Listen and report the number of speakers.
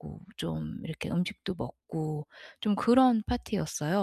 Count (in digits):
1